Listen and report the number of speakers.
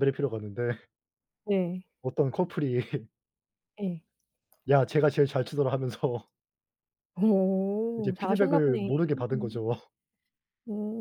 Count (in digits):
2